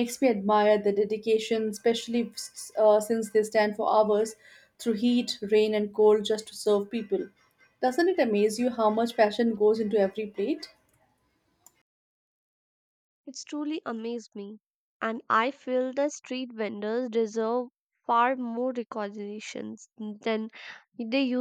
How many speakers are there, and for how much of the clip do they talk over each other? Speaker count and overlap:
2, no overlap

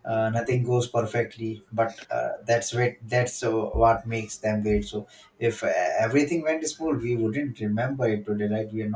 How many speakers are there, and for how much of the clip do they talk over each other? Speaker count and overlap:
1, no overlap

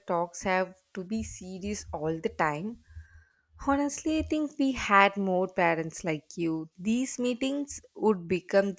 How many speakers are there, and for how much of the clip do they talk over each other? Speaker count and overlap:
1, no overlap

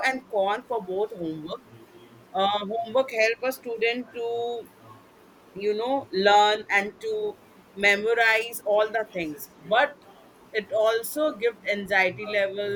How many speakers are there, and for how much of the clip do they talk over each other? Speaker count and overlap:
1, no overlap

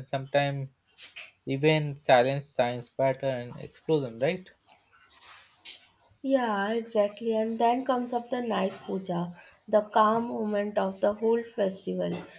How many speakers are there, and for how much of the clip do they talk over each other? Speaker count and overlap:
2, no overlap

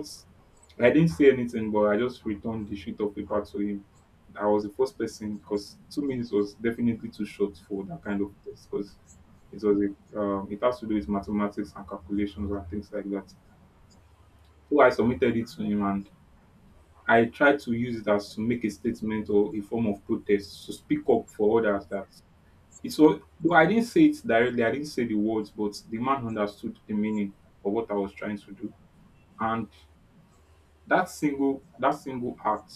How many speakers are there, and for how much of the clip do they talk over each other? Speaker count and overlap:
1, no overlap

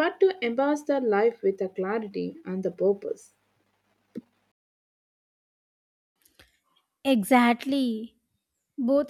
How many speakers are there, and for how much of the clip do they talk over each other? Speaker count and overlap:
2, no overlap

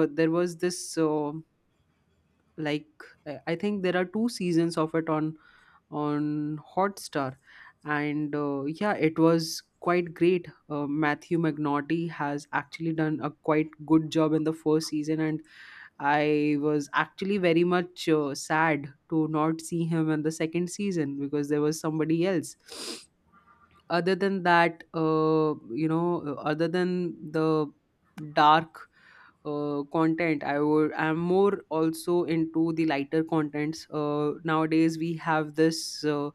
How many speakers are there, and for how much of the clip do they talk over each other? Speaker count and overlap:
1, no overlap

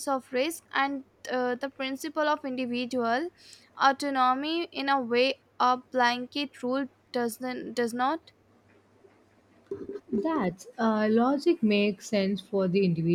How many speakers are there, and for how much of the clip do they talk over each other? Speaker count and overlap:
2, no overlap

